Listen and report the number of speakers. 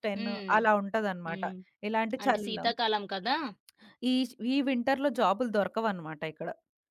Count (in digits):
2